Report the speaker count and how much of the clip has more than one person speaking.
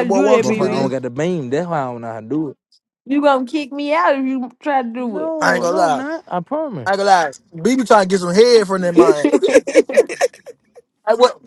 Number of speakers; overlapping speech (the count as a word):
three, about 19%